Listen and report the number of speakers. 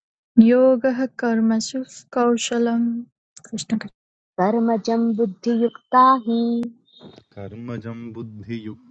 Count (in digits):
3